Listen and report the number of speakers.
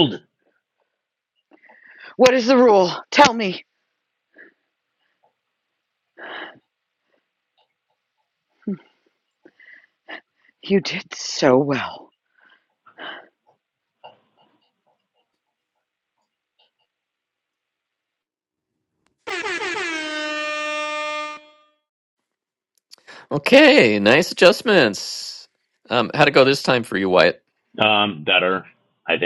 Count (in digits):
3